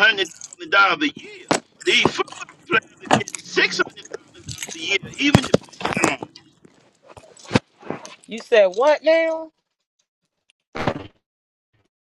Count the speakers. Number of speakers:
two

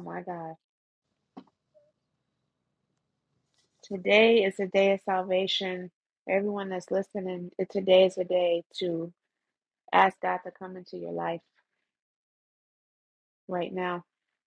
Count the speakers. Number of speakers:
one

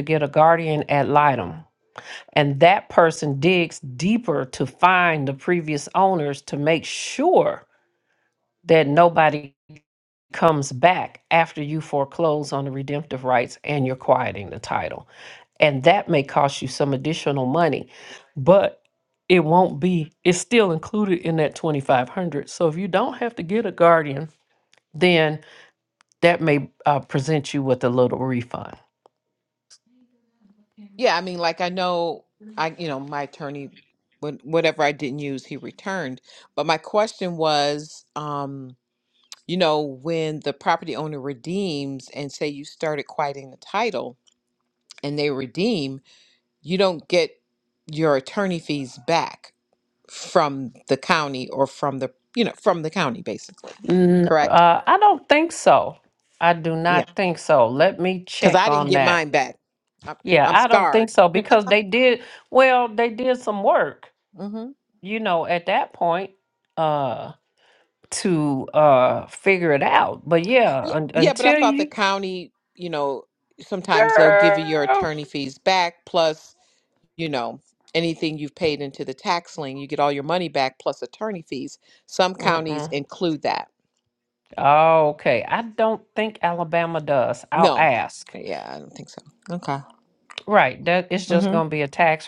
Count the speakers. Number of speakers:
two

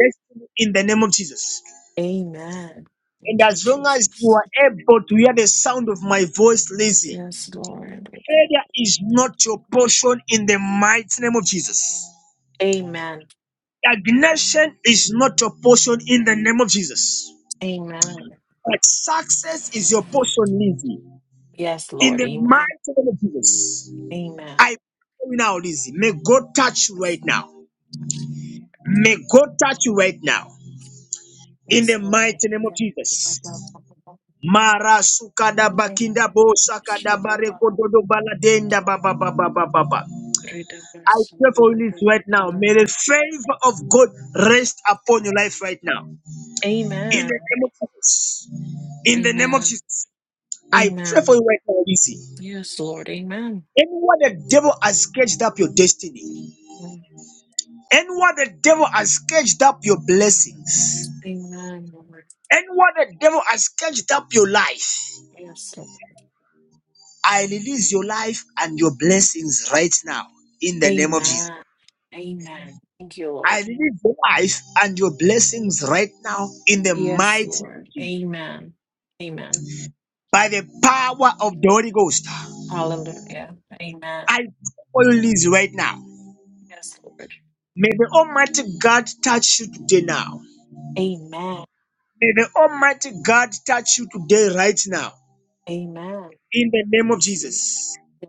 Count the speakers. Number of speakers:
two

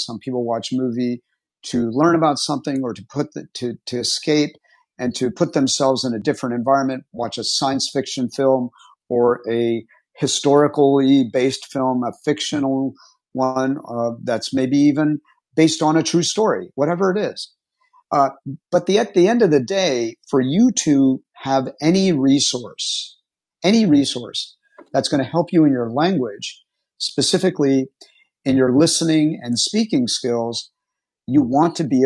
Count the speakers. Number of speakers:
one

